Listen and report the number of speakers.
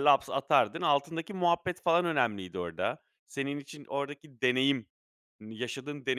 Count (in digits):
1